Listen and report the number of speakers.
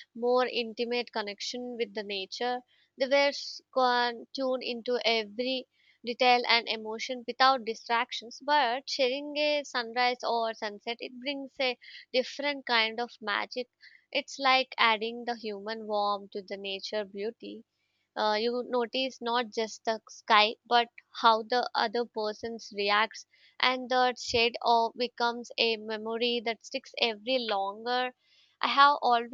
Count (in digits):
1